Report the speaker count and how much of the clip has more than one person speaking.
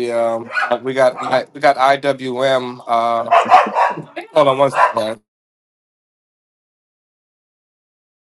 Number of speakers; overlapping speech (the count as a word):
one, no overlap